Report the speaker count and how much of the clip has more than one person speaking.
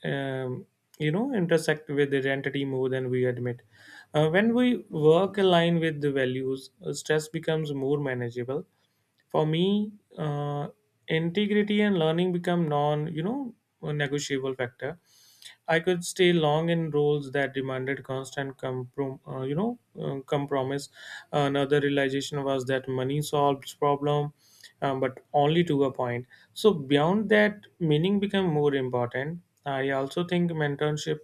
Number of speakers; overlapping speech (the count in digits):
1, no overlap